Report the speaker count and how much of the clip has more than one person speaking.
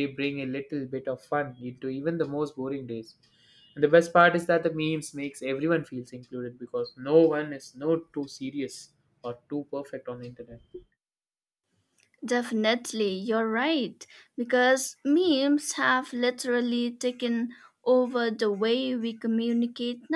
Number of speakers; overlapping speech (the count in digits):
2, no overlap